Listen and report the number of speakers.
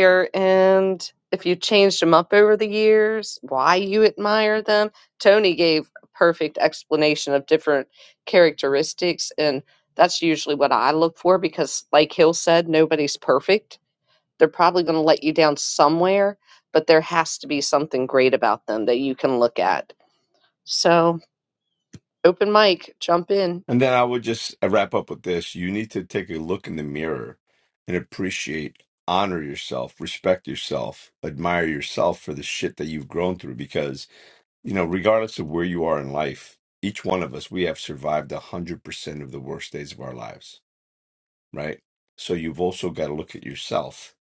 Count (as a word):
two